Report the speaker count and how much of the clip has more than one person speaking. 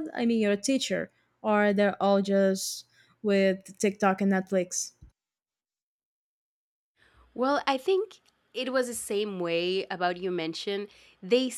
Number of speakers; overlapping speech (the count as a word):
two, no overlap